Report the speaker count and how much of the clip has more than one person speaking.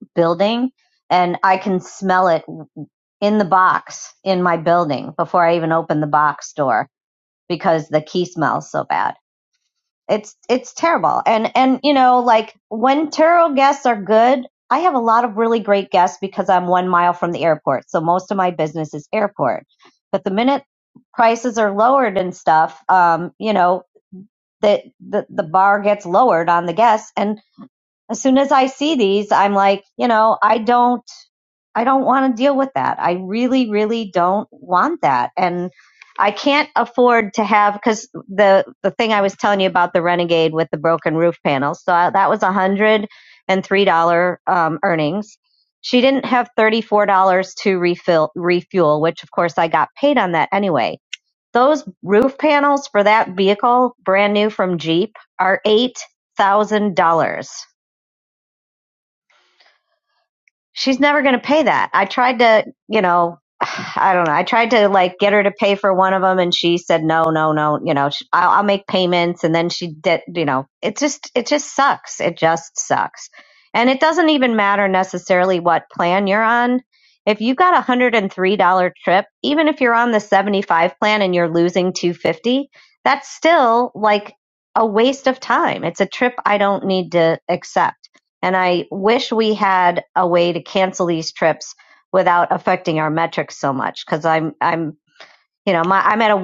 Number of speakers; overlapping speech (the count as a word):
one, no overlap